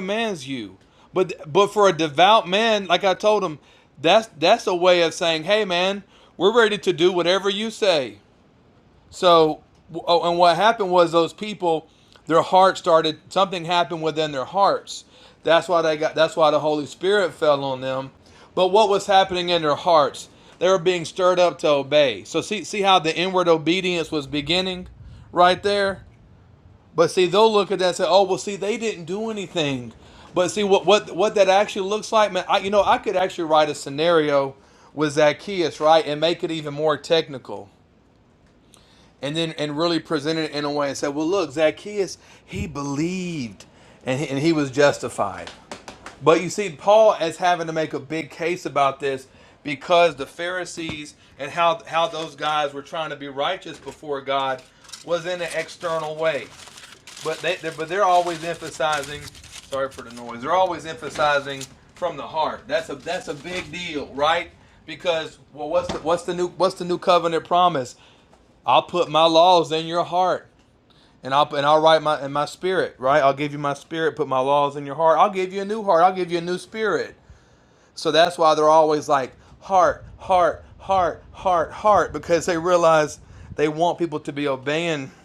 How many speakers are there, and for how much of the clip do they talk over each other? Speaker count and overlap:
1, no overlap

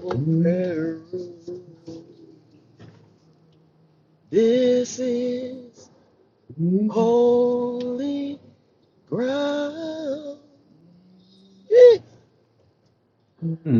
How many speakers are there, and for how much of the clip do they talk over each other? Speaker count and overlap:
2, about 5%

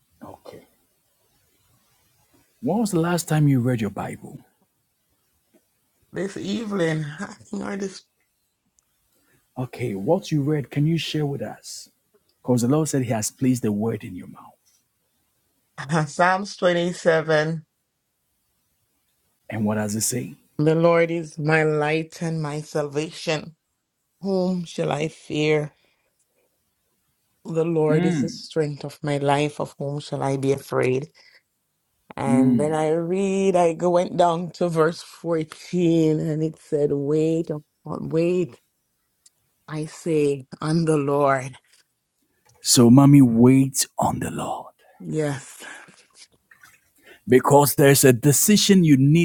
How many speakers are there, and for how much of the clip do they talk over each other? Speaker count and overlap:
2, no overlap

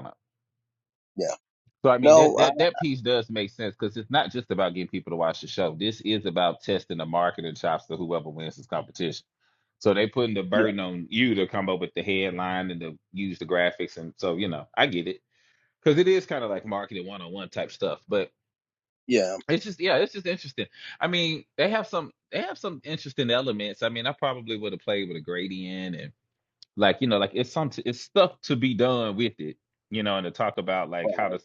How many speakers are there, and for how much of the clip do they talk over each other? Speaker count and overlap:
2, about 2%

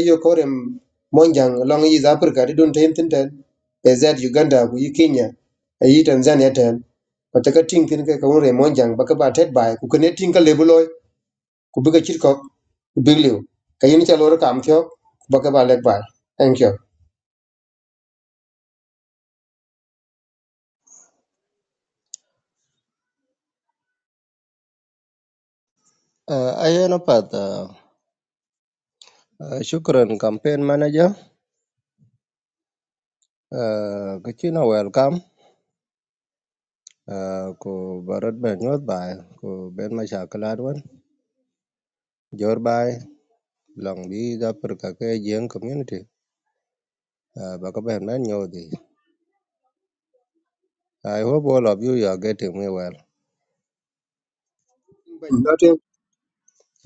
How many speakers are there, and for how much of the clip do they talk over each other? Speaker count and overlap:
2, no overlap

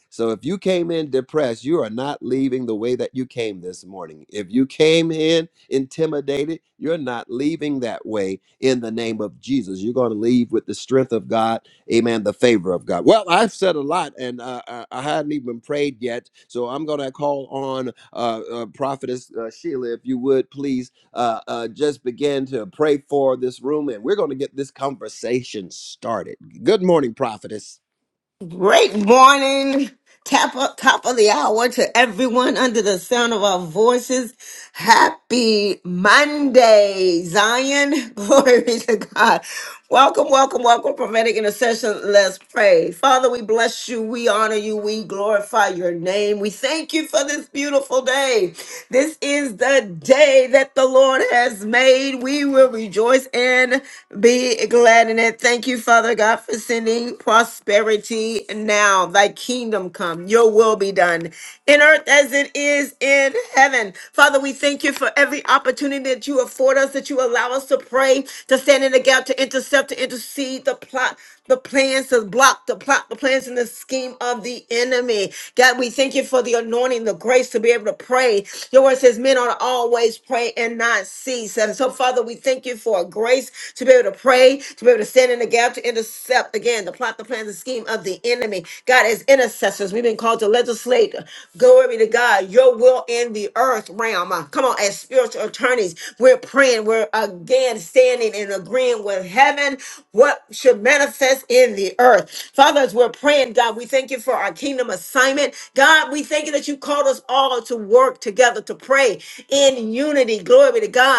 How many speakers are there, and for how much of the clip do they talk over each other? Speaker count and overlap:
2, no overlap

